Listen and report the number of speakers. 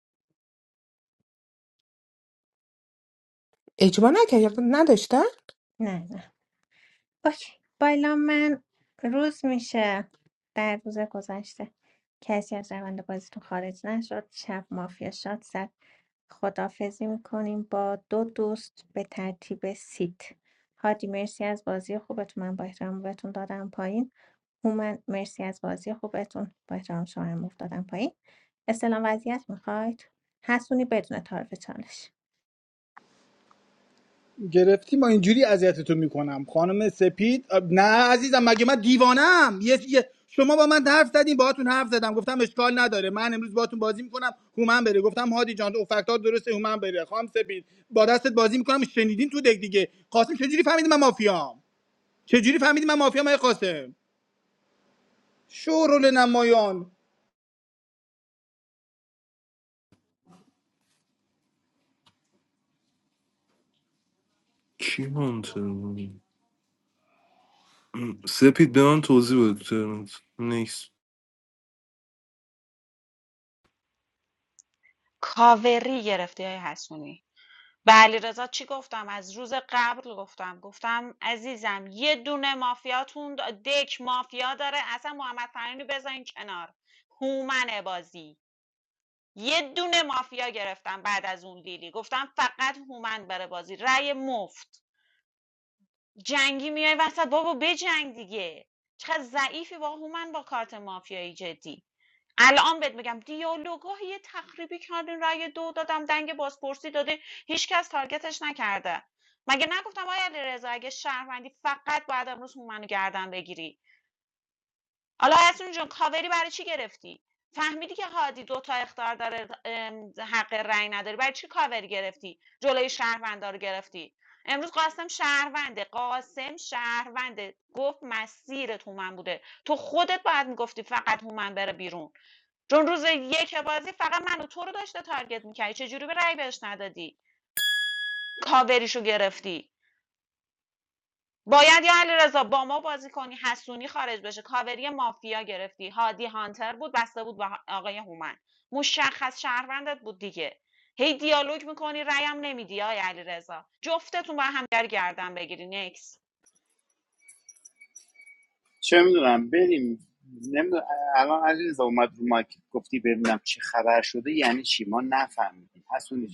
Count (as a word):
six